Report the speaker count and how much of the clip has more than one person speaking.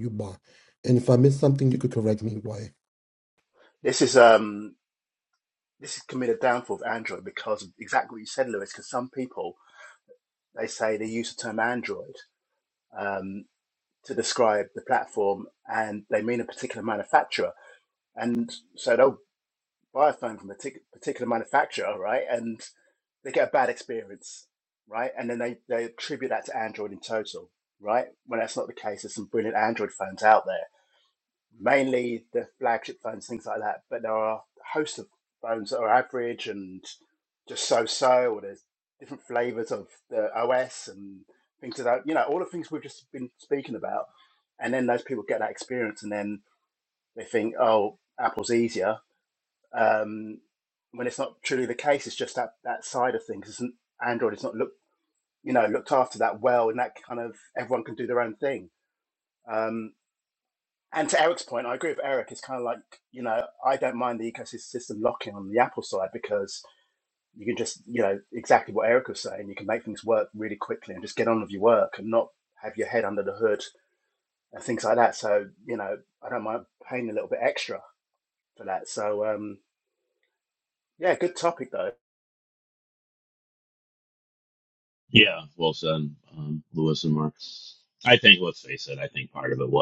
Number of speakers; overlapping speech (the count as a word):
three, no overlap